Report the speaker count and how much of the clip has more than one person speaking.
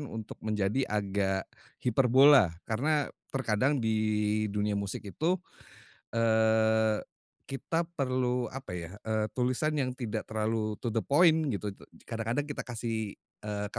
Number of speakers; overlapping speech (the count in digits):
1, no overlap